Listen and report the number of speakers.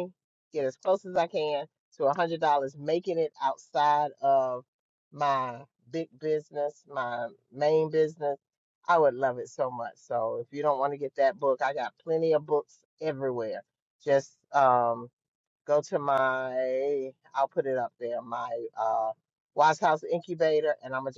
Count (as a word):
one